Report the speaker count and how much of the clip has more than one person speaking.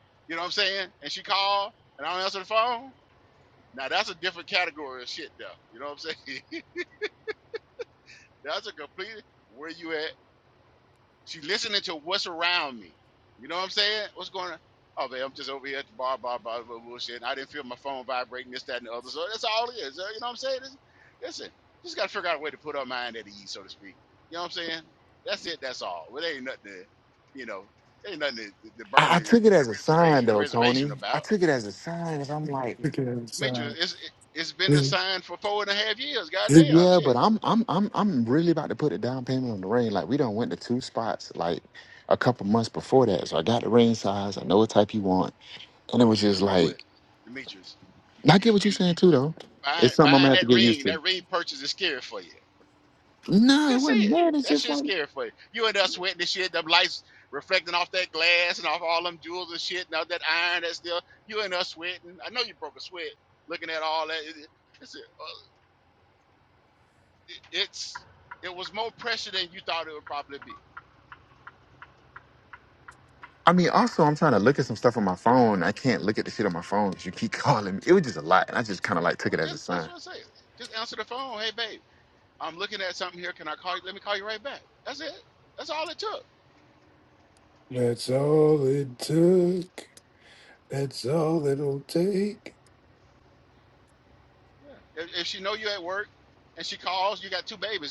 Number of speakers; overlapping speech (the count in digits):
3, about 6%